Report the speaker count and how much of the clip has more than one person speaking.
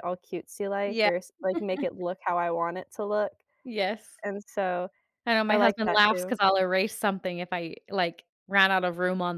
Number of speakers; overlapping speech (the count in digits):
2, about 12%